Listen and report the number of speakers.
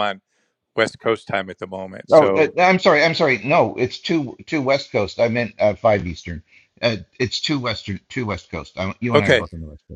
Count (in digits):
2